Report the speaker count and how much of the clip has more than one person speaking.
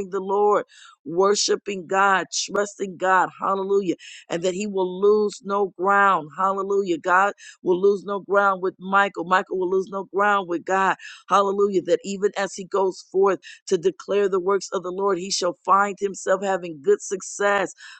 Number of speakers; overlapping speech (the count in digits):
1, no overlap